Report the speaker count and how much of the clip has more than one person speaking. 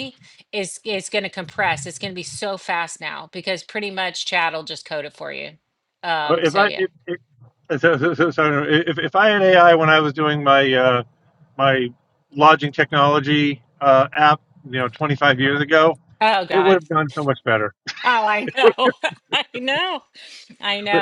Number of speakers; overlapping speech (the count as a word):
two, about 5%